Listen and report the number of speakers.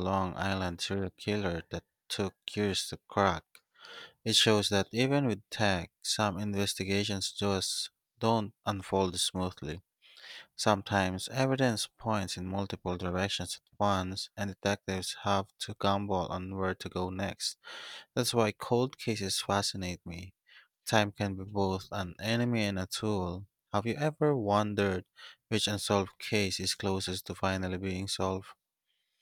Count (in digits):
1